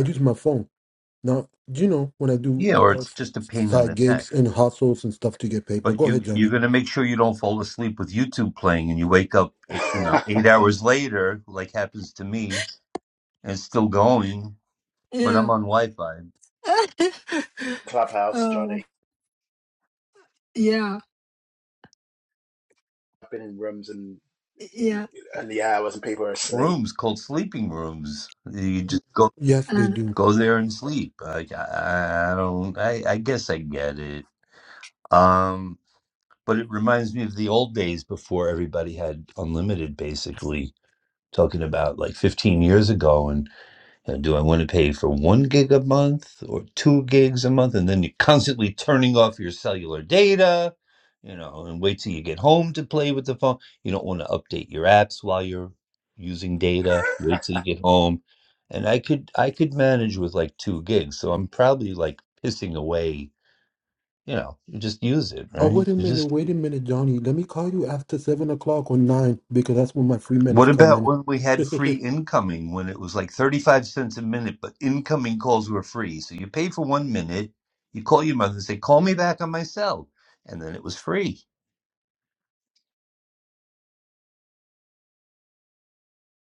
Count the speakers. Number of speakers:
four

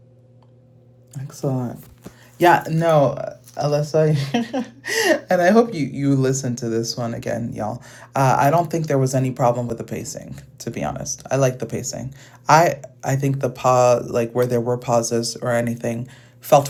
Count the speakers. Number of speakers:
one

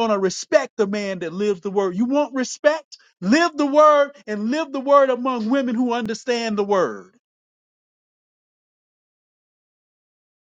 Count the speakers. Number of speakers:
one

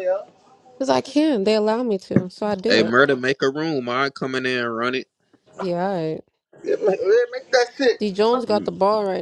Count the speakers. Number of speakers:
three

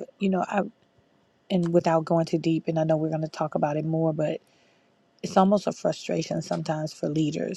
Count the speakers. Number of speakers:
one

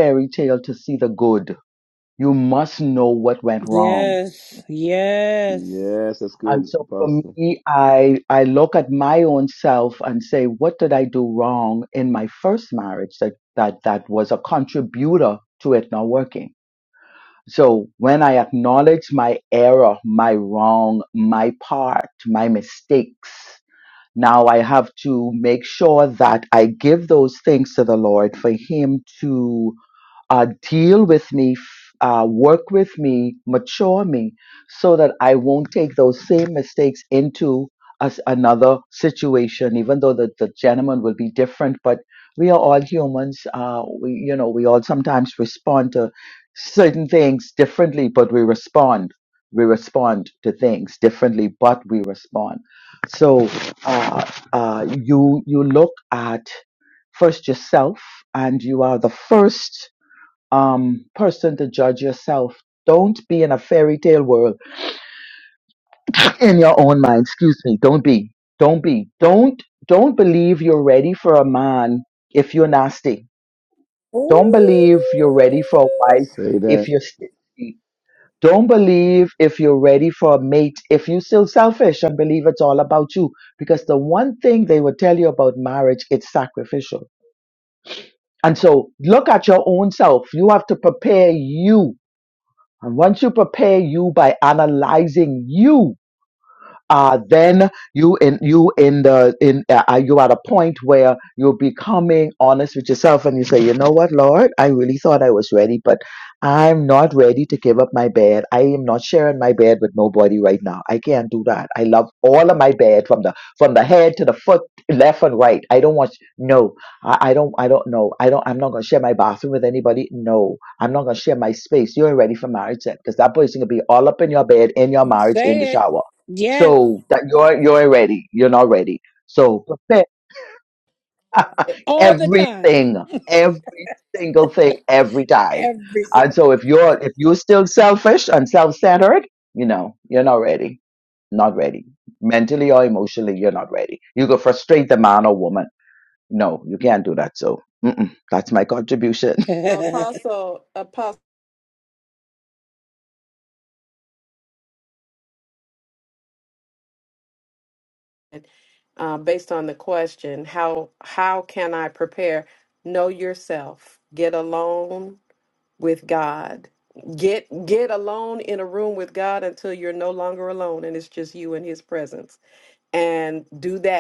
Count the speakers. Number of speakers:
four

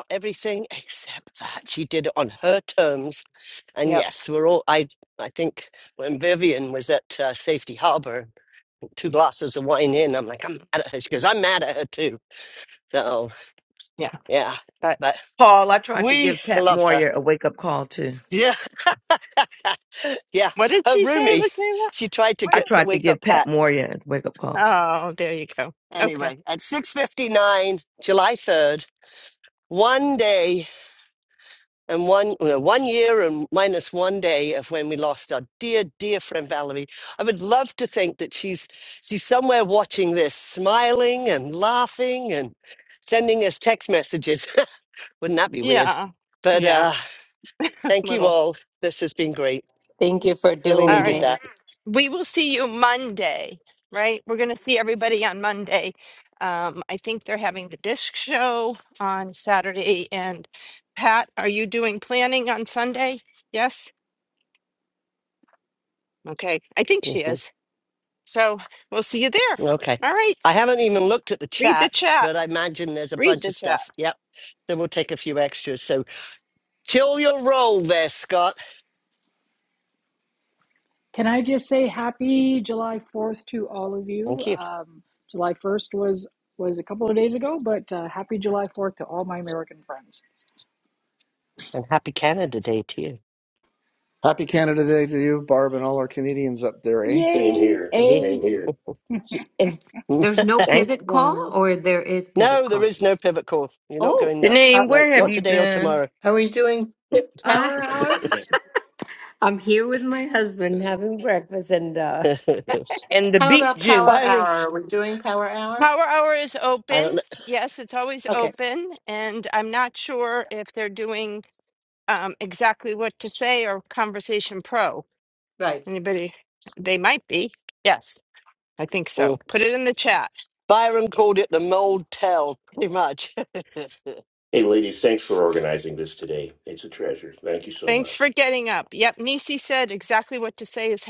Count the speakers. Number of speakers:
eight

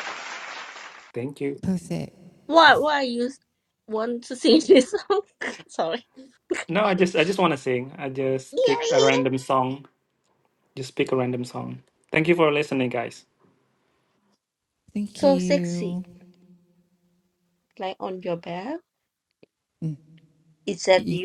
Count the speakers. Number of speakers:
three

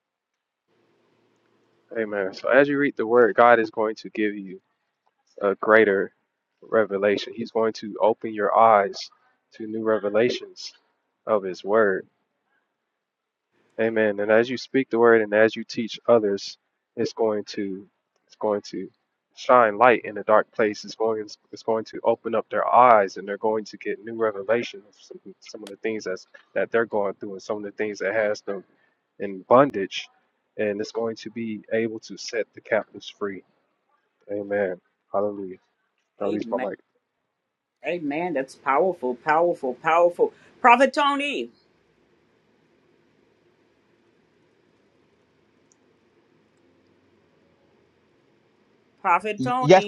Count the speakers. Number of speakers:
two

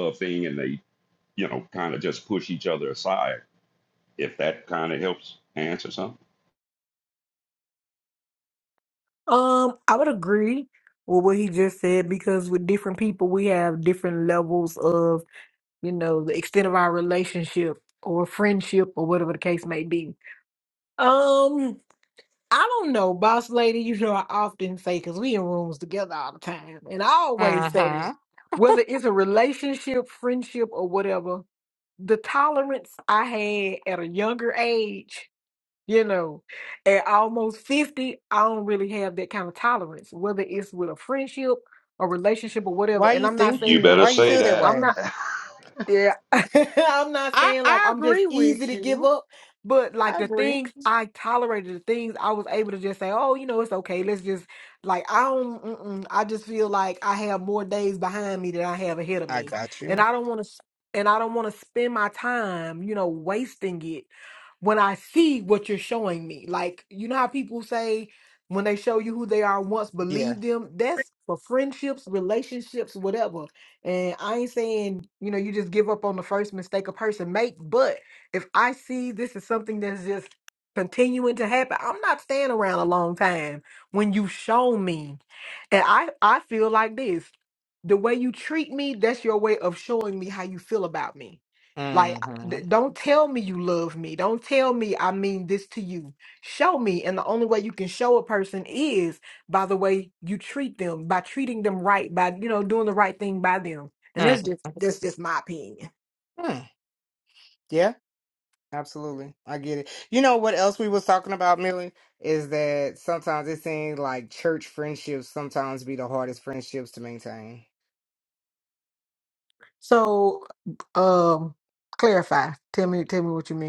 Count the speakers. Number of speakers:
three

